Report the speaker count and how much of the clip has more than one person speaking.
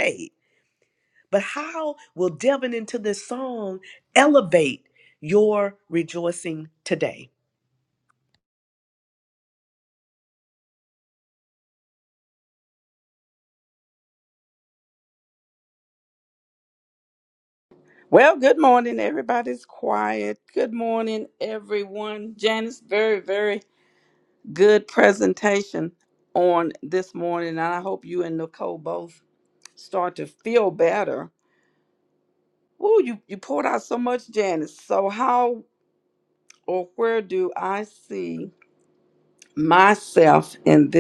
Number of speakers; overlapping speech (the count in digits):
2, no overlap